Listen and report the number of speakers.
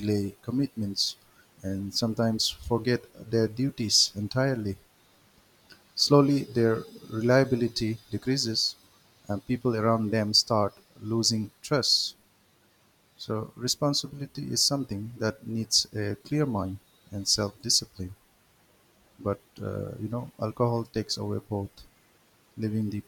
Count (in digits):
1